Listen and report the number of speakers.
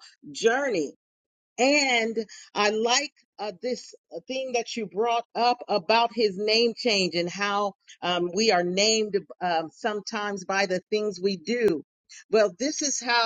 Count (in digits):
1